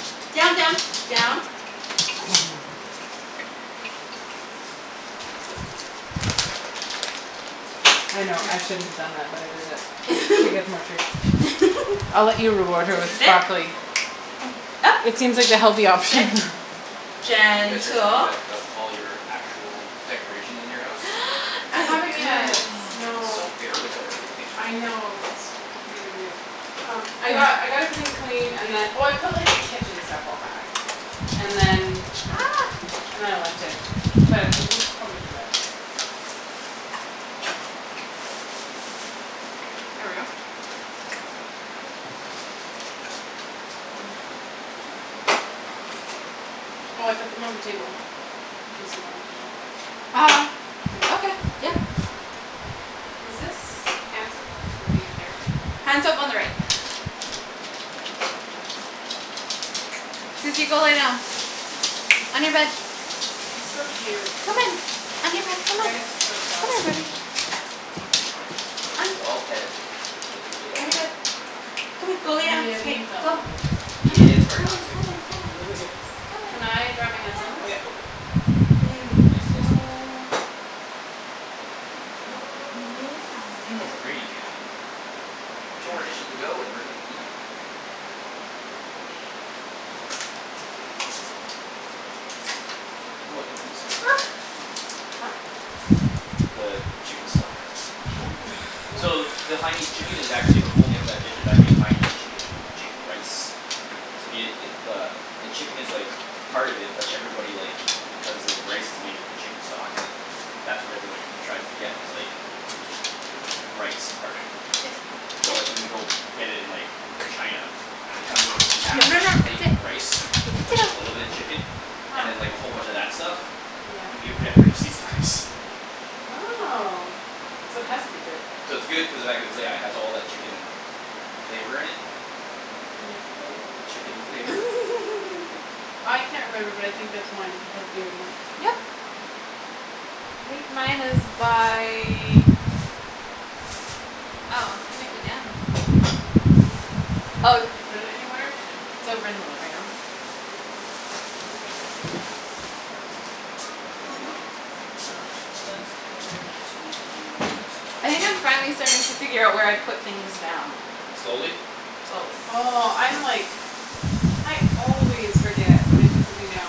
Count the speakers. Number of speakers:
3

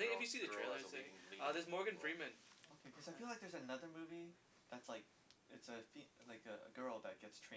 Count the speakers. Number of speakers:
3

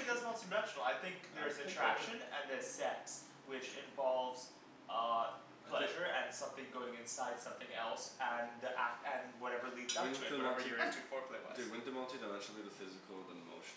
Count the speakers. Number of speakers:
2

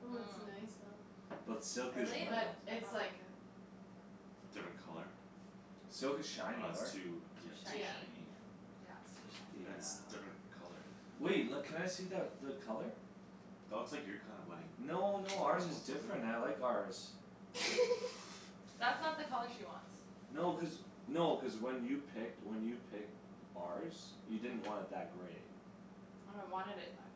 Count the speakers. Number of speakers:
4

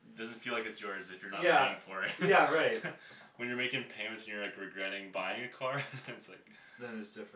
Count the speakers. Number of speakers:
2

